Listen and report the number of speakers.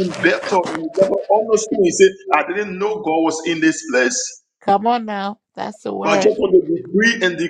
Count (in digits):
2